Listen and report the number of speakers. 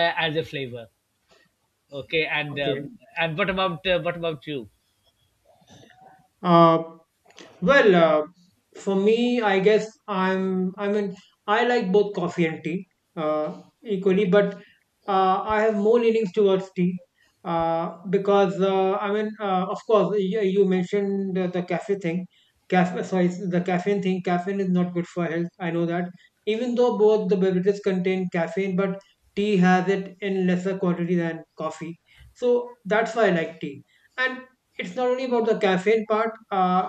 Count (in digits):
2